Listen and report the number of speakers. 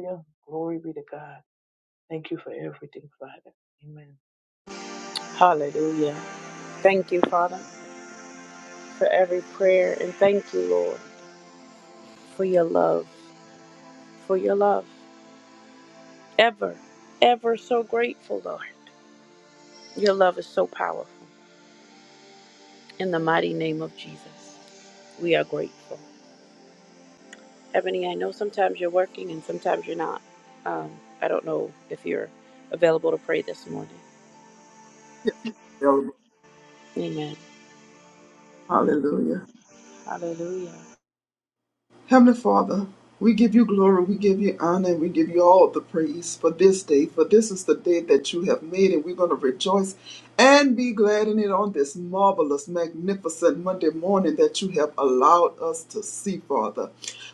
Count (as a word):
three